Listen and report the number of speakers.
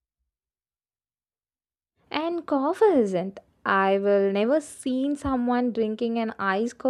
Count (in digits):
1